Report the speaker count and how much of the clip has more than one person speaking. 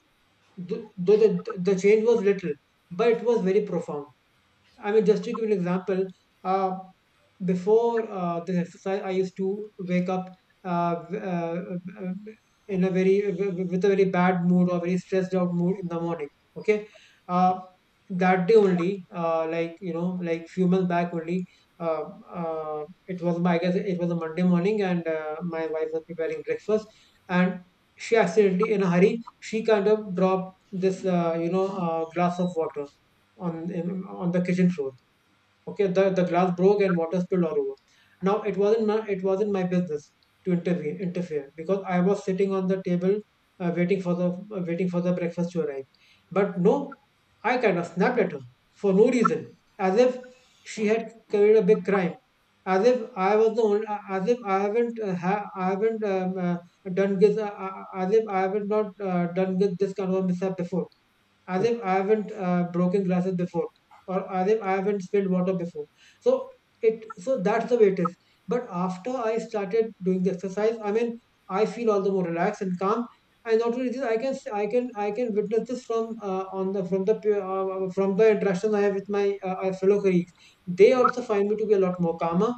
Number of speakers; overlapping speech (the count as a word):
one, no overlap